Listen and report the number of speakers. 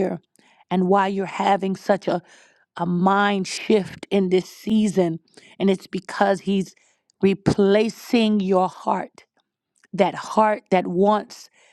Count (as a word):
one